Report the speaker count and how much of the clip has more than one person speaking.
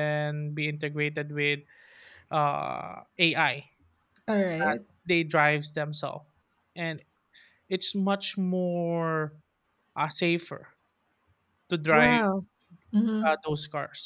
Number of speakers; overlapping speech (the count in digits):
2, about 3%